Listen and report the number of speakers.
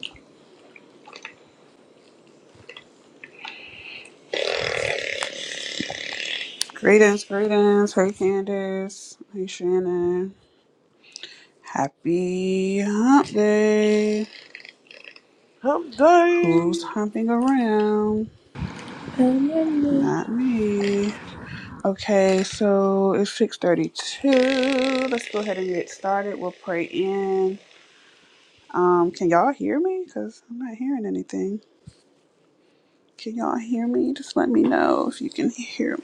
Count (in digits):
3